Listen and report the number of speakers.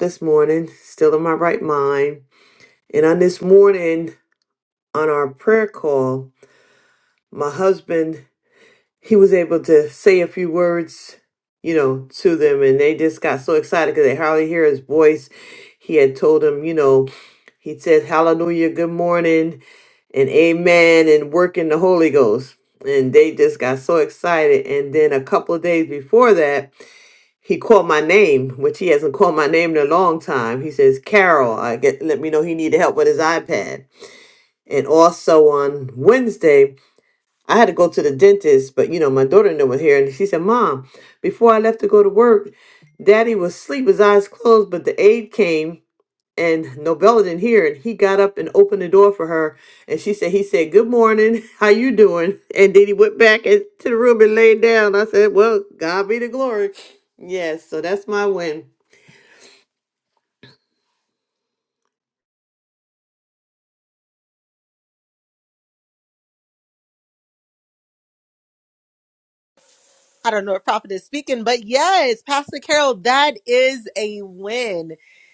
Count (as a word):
two